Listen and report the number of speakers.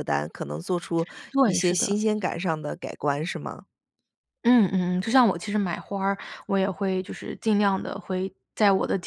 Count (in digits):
2